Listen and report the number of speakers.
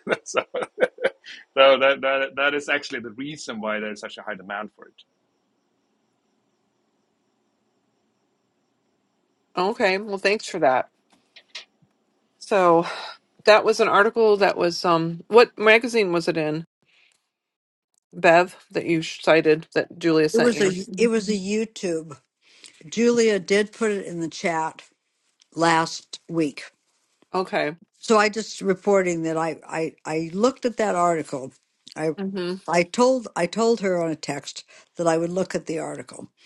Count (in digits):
3